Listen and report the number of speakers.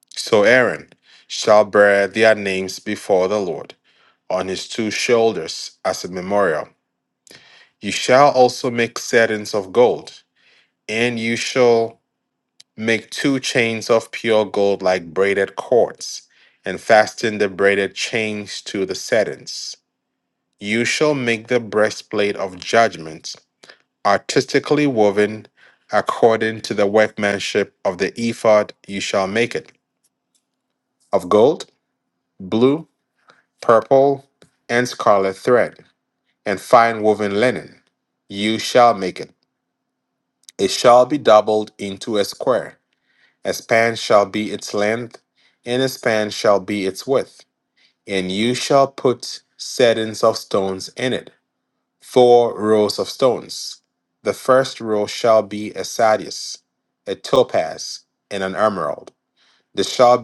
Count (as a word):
one